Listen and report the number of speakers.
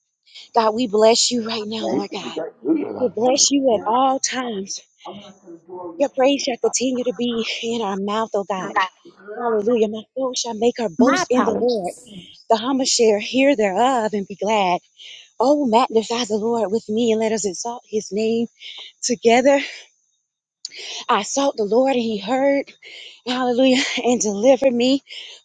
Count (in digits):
2